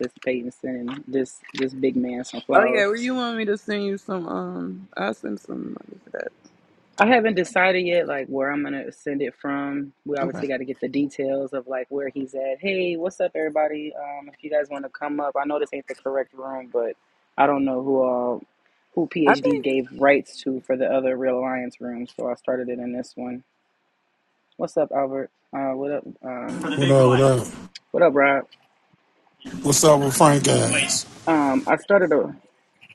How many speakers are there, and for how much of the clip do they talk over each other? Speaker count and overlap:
3, about 3%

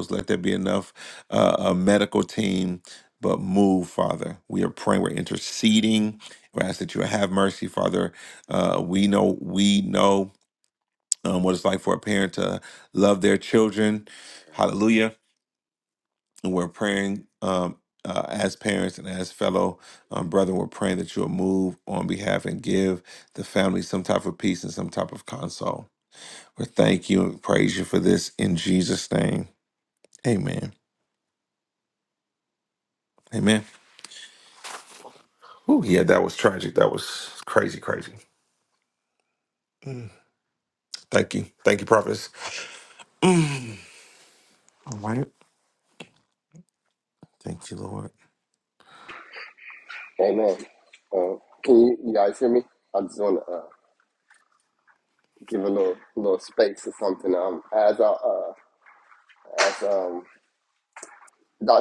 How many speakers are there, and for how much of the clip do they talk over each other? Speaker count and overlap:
2, no overlap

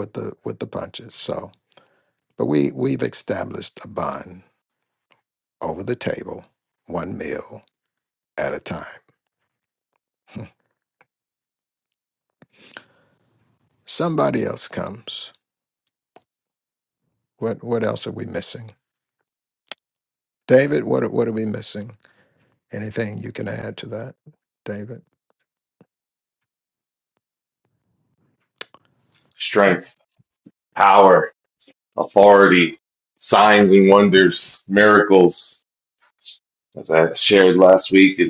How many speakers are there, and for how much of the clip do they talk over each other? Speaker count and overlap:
2, no overlap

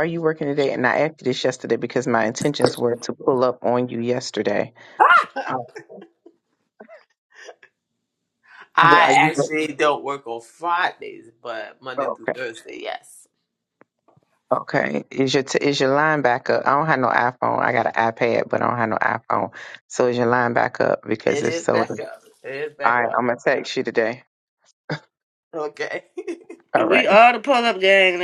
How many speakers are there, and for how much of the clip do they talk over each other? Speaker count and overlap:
3, about 9%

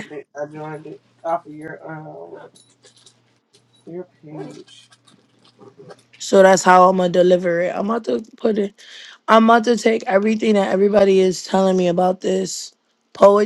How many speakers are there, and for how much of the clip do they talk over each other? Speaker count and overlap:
2, under 1%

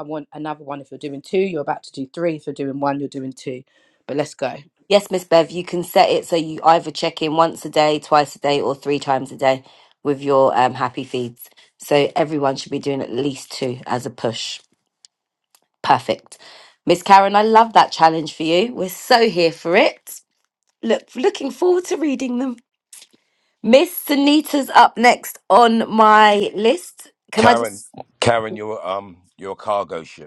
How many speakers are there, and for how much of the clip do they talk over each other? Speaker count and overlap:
3, about 1%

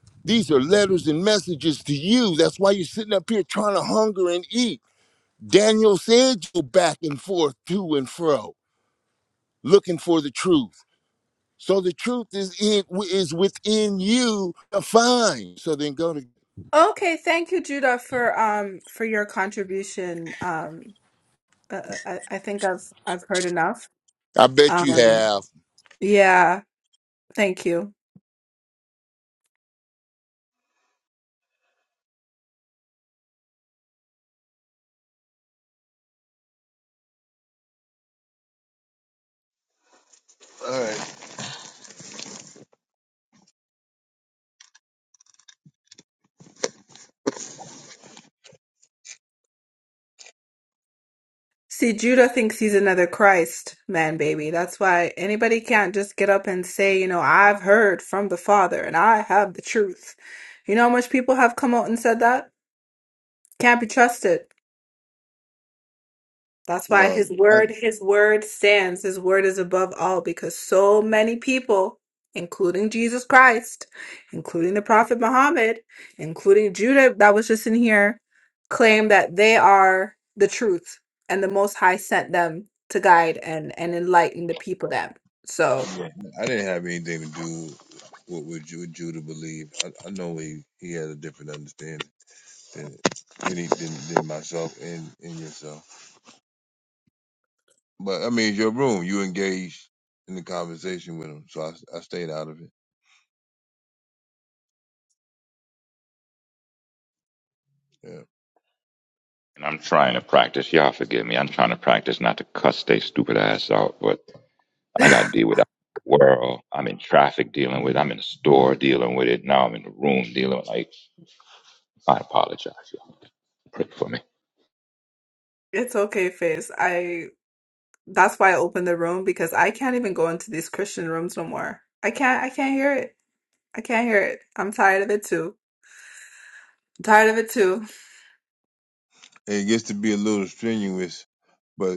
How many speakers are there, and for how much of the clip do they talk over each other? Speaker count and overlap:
4, about 1%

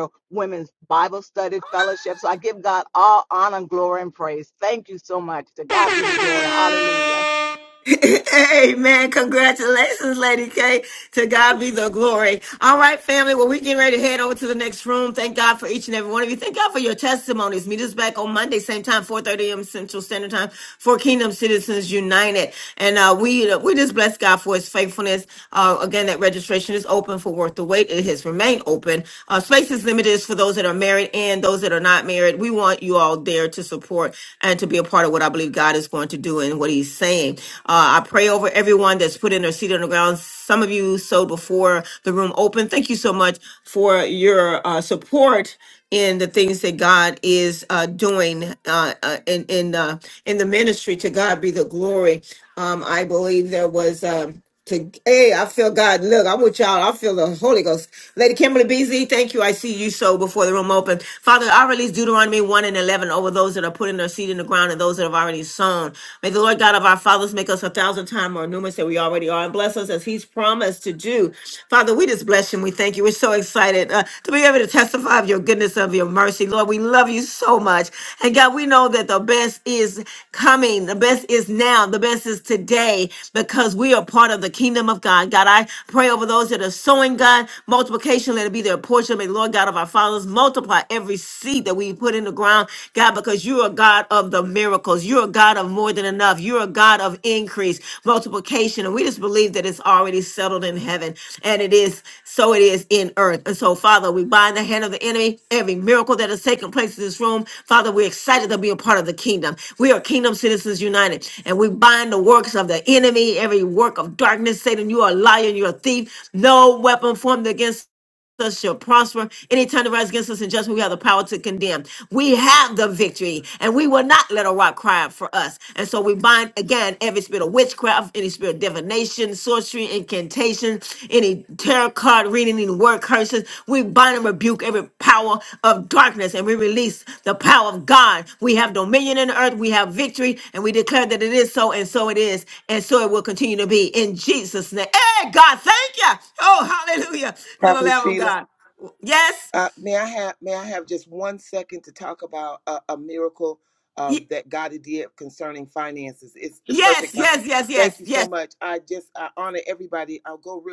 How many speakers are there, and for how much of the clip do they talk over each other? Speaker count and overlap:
3, about 1%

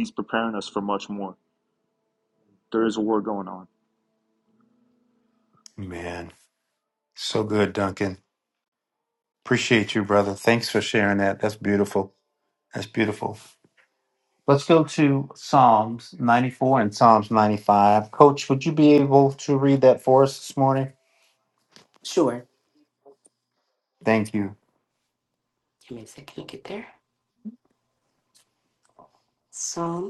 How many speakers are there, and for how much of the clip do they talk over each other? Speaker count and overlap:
3, no overlap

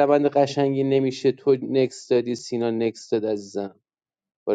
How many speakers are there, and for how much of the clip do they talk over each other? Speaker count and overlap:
1, no overlap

